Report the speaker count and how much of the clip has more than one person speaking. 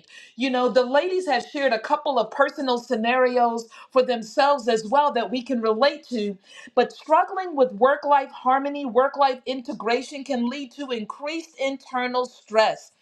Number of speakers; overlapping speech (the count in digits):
1, no overlap